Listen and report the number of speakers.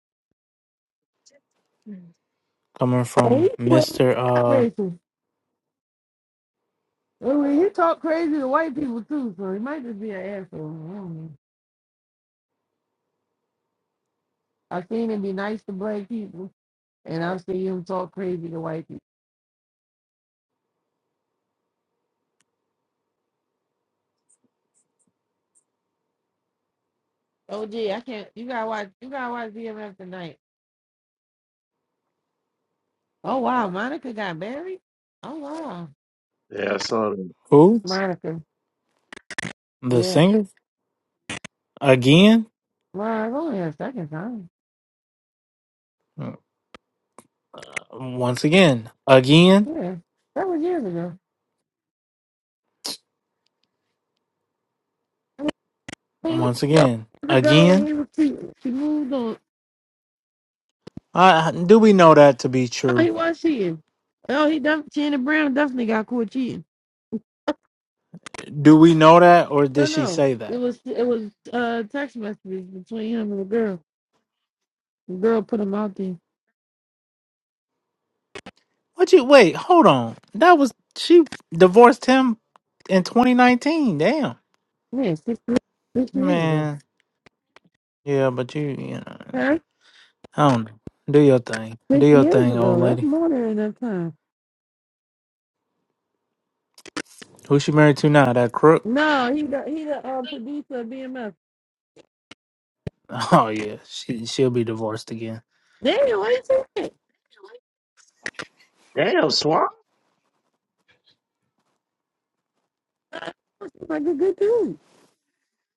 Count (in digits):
3